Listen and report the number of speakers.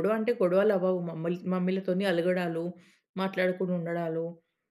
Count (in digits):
1